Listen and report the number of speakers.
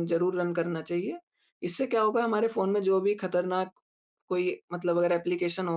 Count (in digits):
1